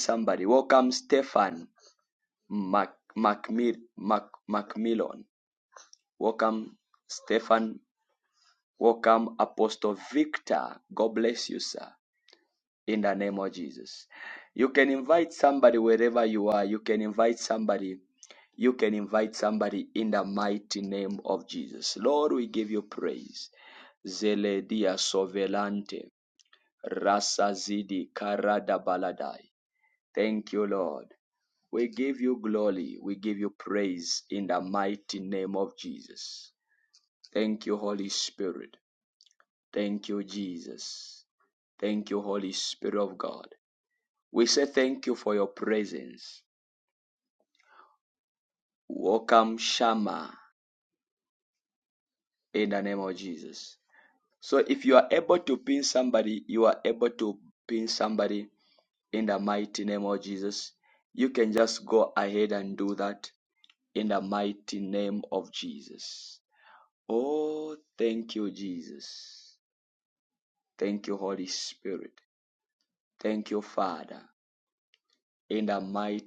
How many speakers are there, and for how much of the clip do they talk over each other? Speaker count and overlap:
1, no overlap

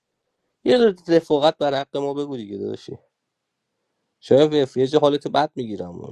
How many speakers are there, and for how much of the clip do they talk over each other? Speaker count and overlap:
1, no overlap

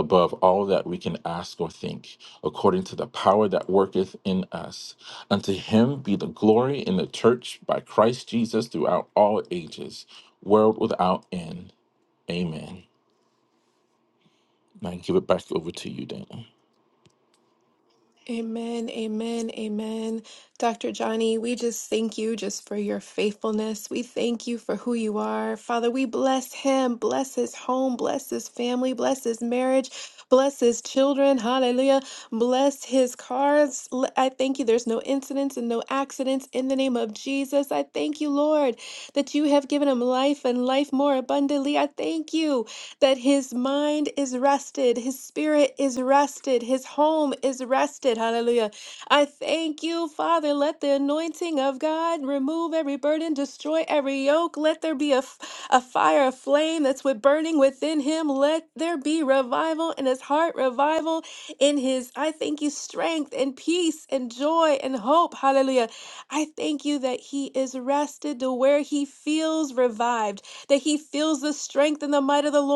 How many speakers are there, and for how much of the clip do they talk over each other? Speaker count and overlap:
2, no overlap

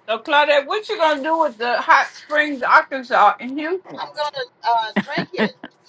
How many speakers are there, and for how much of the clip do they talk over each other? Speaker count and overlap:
2, about 1%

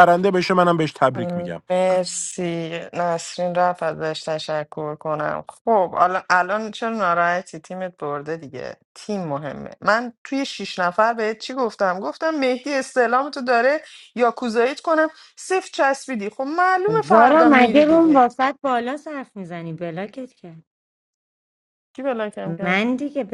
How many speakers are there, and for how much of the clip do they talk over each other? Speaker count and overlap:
3, about 8%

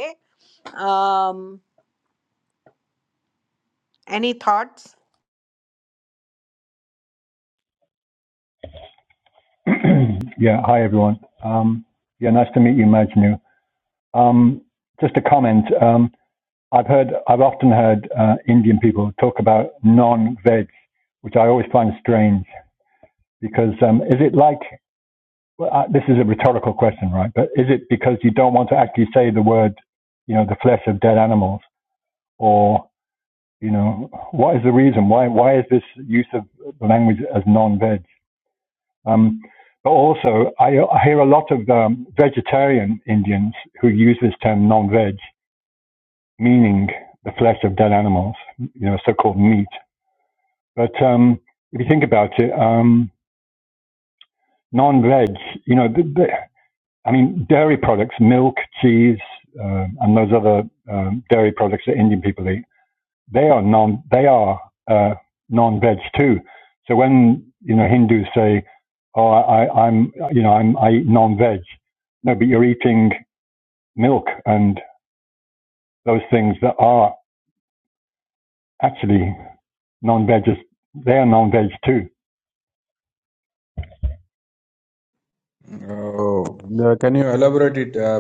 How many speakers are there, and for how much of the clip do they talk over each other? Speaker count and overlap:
3, no overlap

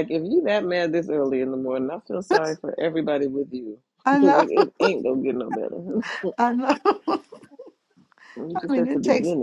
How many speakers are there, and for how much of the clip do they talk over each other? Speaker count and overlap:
2, about 13%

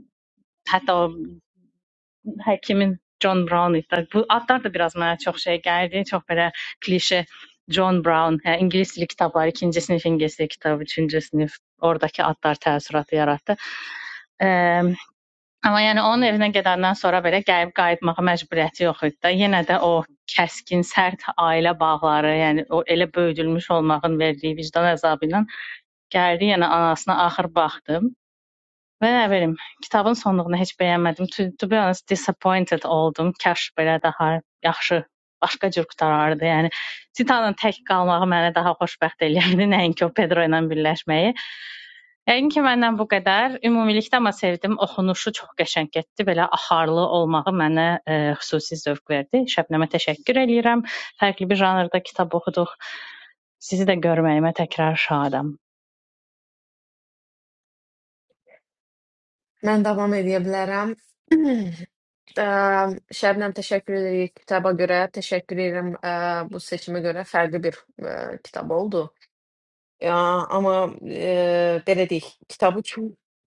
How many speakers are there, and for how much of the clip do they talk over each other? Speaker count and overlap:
2, no overlap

